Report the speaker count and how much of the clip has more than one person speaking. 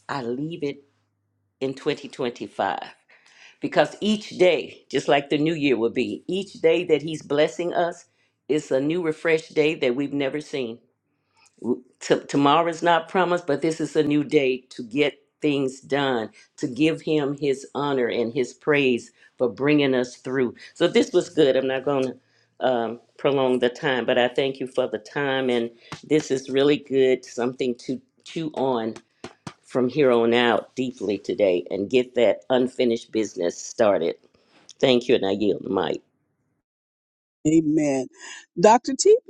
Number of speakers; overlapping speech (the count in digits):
2, no overlap